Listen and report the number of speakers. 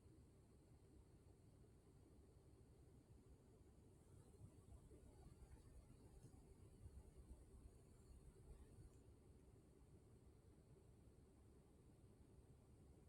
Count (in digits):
0